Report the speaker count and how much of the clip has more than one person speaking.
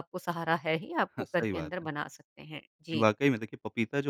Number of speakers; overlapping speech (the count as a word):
two, about 14%